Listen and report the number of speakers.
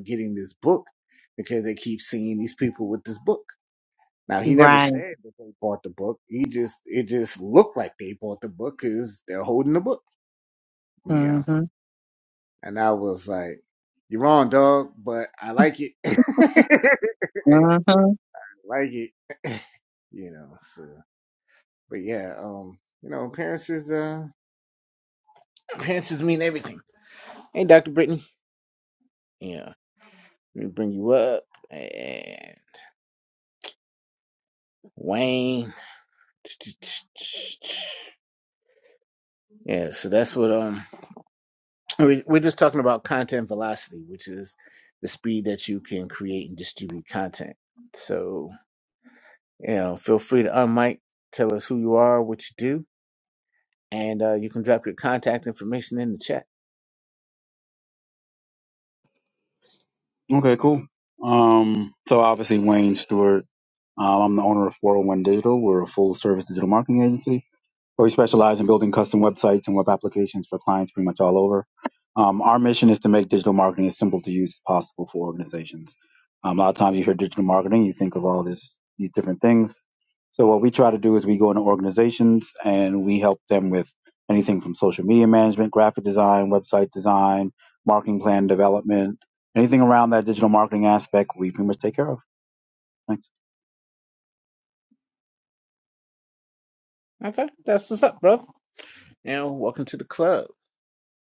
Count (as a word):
three